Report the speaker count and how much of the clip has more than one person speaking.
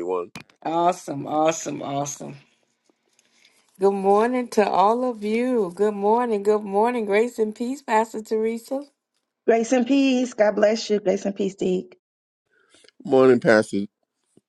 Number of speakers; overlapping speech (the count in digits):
3, no overlap